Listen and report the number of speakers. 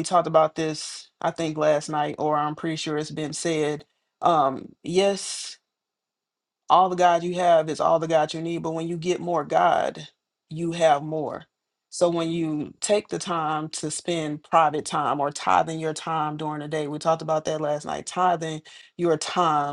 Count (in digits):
1